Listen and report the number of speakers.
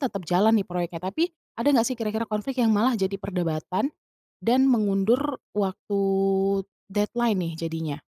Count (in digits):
1